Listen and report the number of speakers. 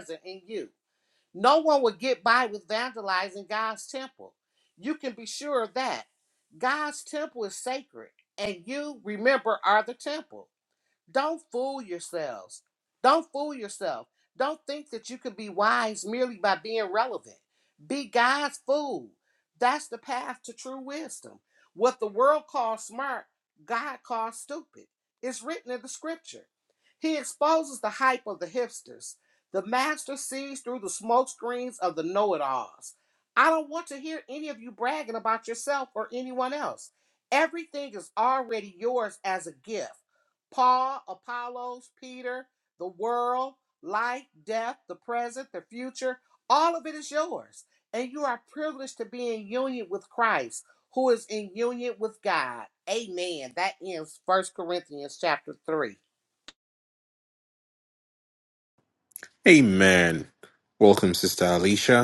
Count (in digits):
2